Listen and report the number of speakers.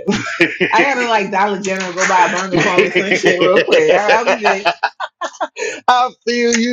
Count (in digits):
2